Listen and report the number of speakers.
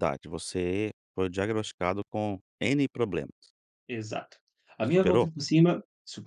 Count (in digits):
2